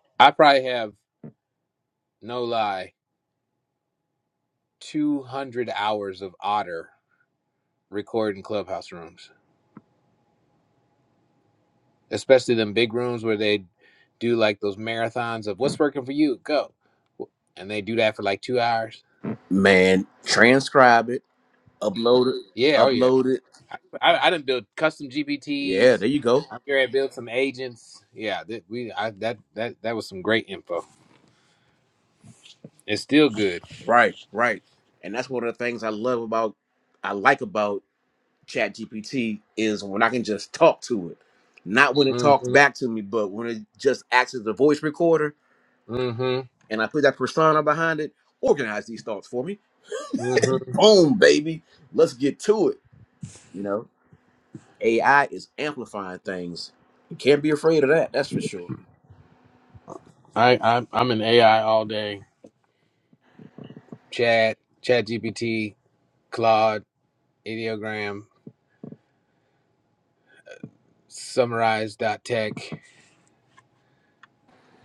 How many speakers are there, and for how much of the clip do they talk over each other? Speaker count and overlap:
2, about 2%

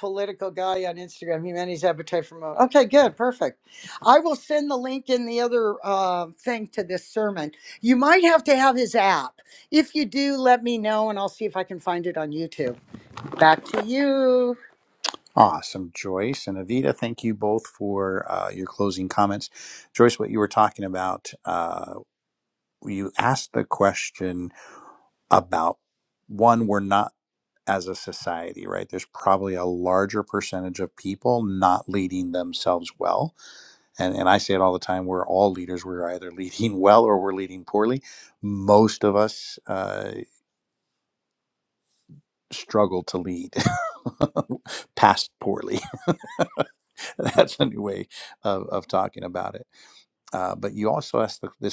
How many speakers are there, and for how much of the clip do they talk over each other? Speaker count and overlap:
2, no overlap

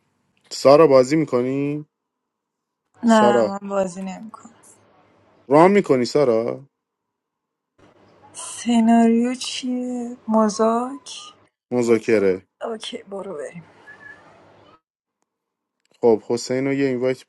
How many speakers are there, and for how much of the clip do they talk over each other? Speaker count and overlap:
2, about 2%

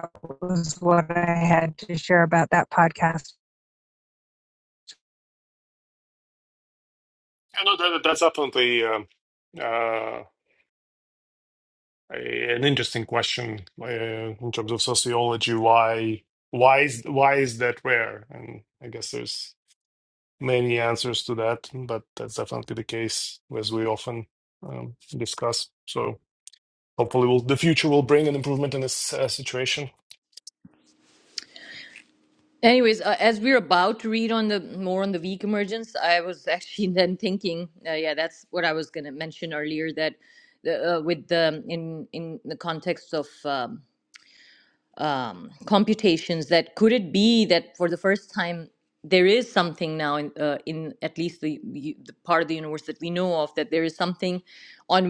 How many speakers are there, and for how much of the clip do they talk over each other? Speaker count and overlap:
3, no overlap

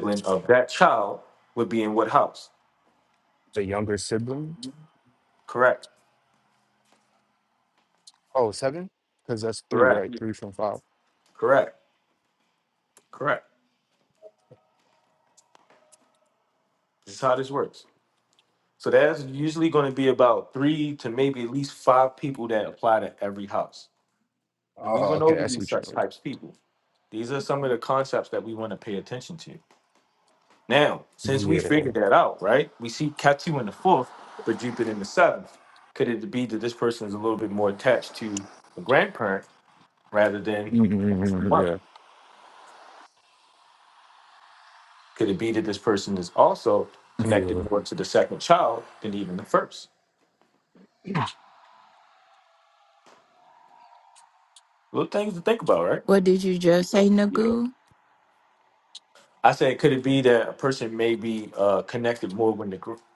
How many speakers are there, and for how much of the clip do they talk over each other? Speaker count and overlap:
3, about 4%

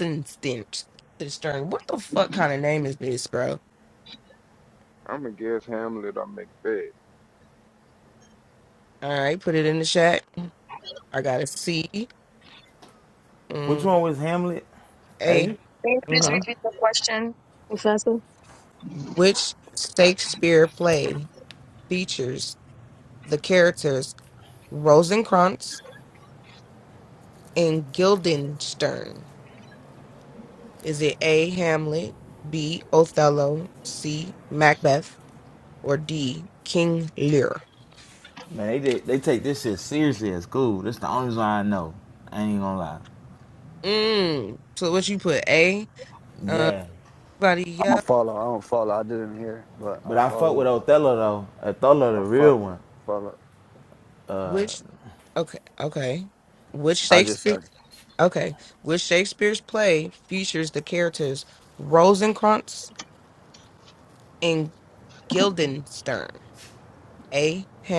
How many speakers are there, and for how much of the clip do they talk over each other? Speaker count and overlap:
5, about 4%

